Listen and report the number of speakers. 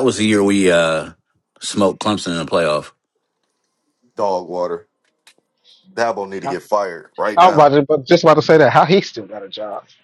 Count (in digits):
3